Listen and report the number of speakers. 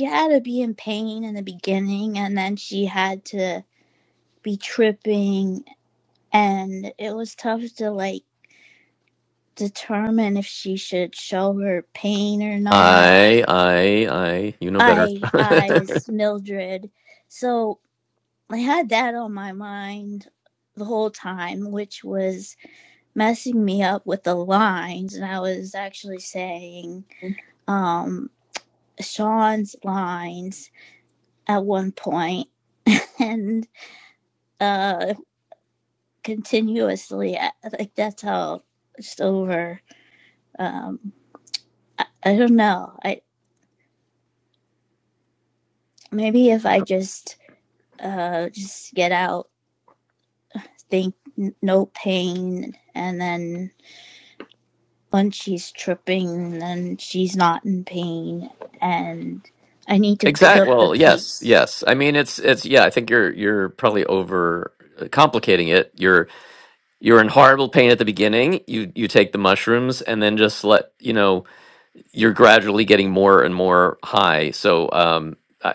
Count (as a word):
two